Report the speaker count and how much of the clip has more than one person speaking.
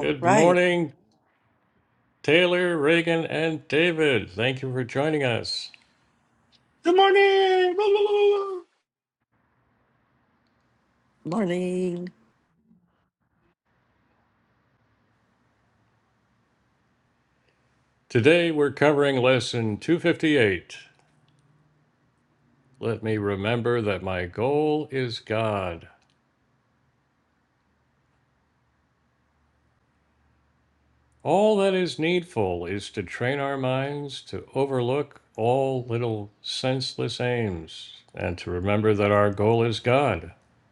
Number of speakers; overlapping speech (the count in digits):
3, about 1%